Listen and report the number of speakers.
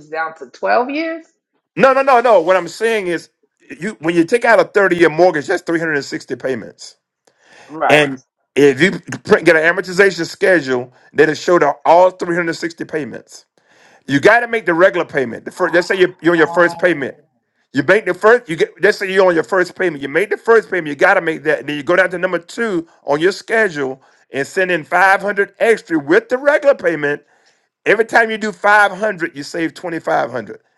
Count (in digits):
2